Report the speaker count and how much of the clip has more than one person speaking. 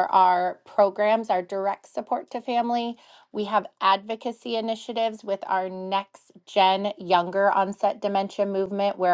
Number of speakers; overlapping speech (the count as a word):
one, no overlap